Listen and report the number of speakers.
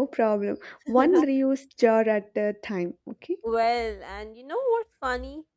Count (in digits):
2